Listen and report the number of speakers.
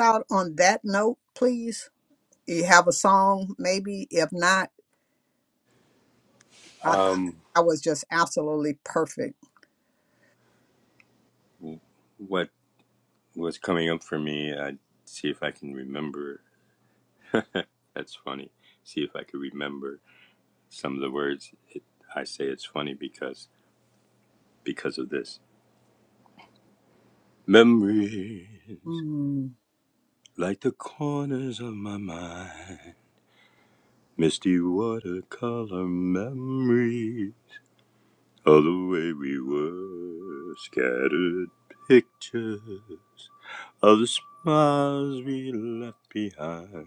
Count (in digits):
2